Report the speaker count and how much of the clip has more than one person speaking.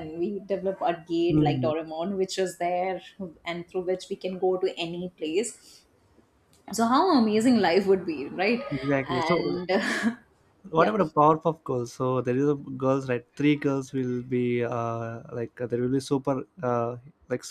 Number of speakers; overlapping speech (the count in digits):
2, about 6%